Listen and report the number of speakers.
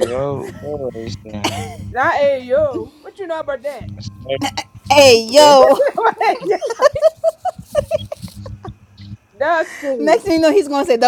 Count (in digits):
3